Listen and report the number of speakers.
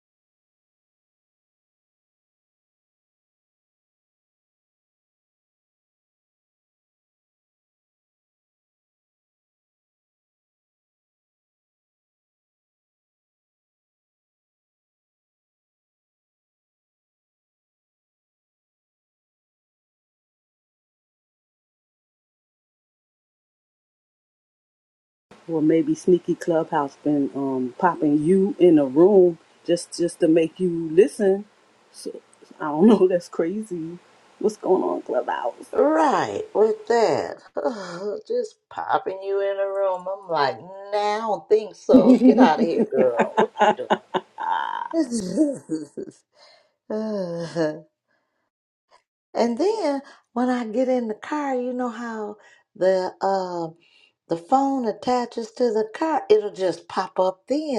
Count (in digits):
2